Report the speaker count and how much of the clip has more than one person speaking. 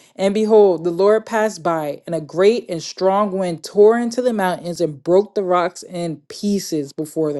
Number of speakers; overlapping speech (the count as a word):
one, no overlap